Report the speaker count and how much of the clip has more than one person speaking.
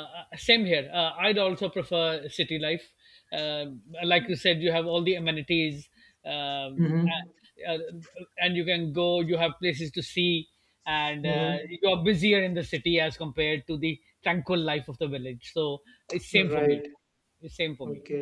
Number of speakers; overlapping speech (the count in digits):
2, about 6%